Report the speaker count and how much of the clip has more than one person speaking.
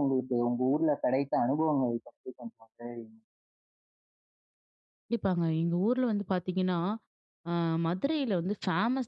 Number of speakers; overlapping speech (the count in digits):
2, no overlap